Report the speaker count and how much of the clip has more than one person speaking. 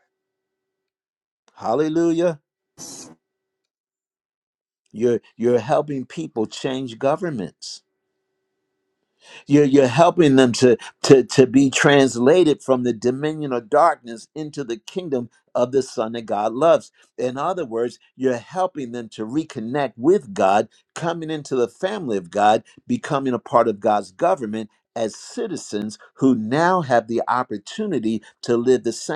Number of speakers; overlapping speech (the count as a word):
one, no overlap